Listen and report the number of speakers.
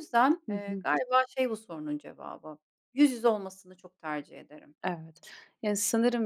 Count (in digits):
2